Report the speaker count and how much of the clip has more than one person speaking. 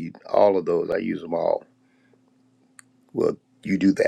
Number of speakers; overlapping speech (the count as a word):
one, no overlap